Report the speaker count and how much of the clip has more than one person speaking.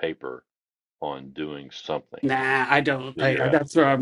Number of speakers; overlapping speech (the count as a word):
two, about 21%